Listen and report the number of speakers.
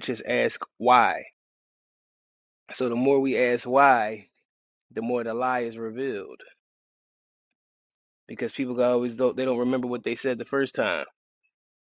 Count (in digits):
1